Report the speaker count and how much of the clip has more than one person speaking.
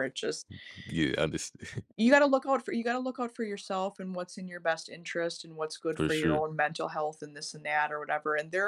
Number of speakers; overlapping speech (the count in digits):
2, about 5%